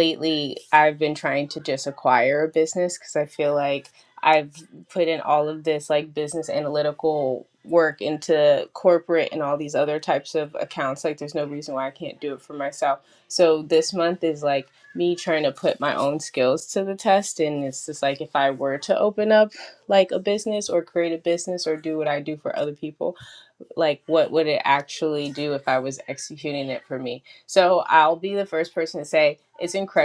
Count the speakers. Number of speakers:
one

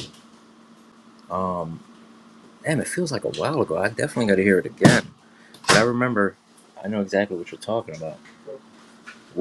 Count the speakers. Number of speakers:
one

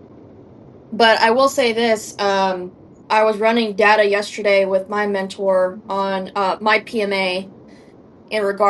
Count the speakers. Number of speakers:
one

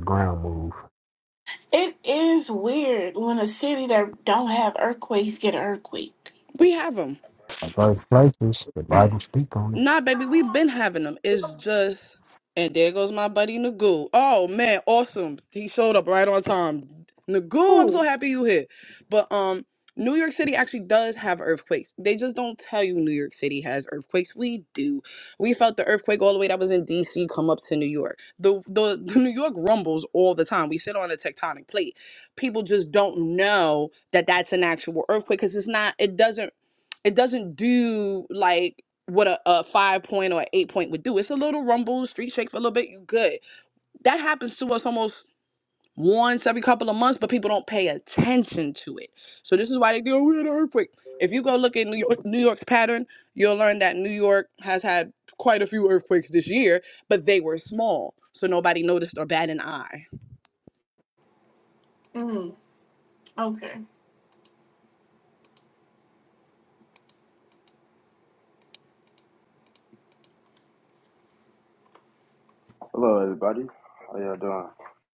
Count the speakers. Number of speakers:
four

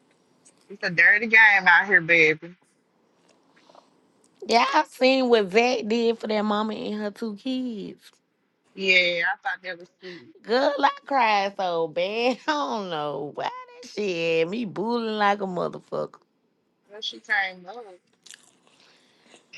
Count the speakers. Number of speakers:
two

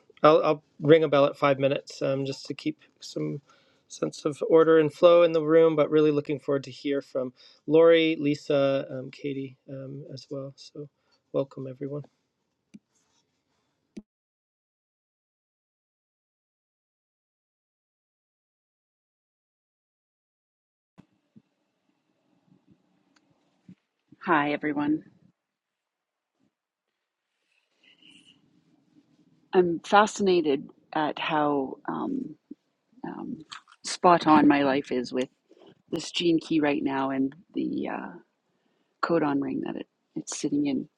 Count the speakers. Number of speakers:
two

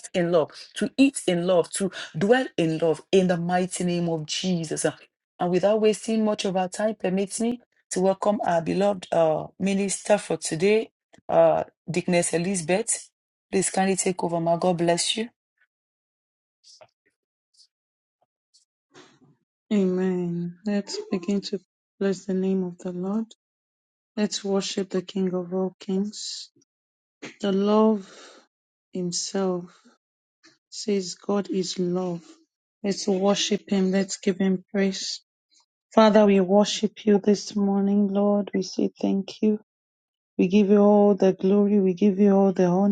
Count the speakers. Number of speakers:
two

